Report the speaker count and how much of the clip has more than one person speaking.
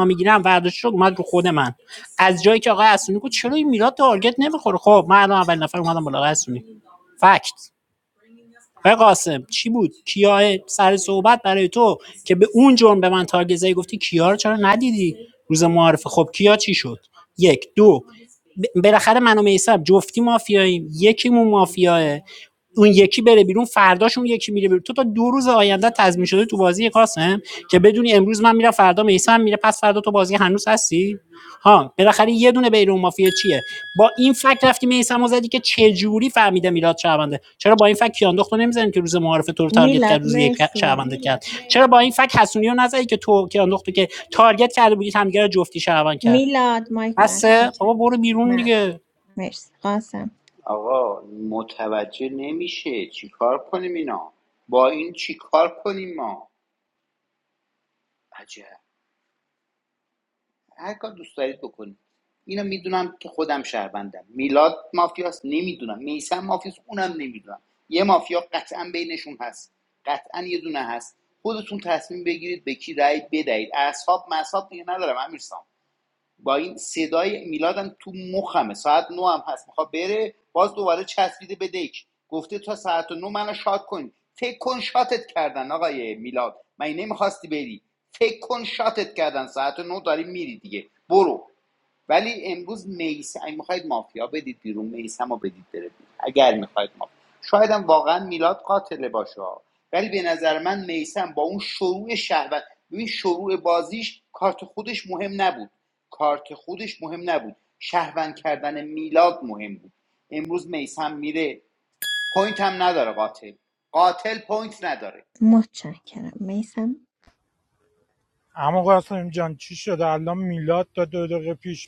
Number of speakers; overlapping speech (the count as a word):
four, about 2%